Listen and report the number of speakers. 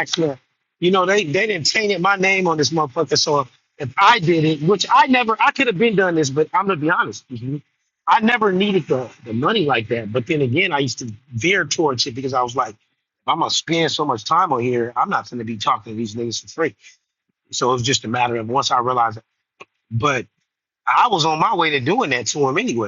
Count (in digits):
1